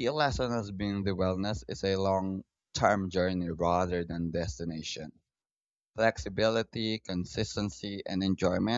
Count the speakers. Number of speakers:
1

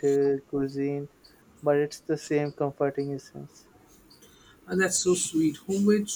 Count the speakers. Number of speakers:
2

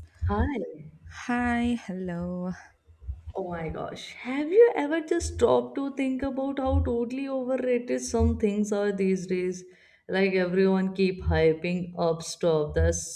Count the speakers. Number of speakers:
2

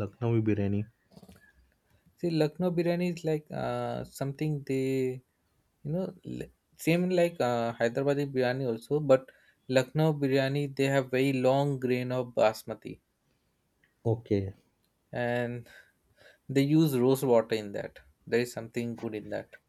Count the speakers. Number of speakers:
2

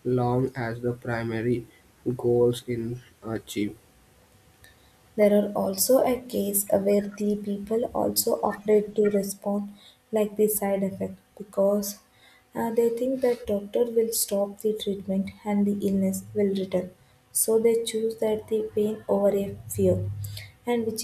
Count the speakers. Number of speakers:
2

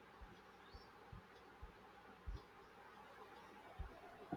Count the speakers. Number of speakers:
0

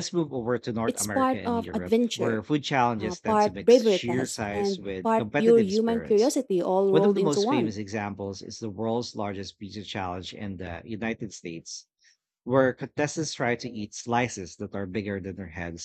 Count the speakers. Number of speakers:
2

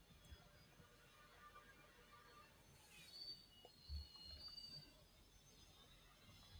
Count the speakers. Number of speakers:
0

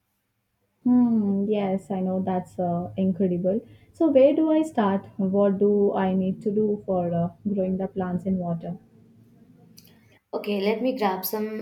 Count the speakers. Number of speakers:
2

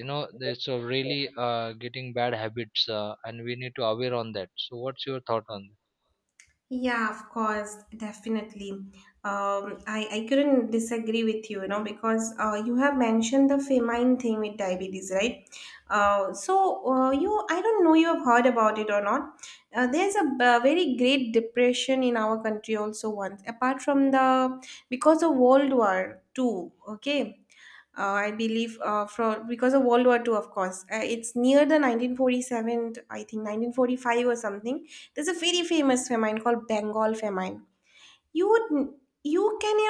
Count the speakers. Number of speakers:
2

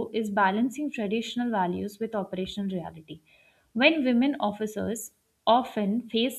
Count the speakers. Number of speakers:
1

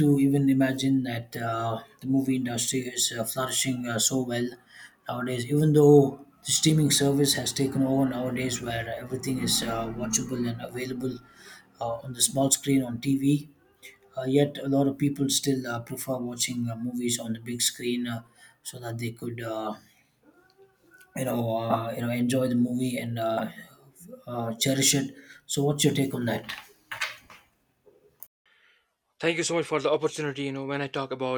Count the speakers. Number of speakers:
2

